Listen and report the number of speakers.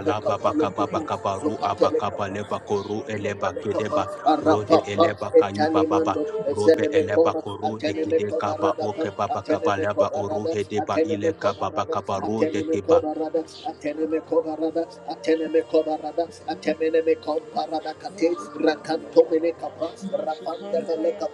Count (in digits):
3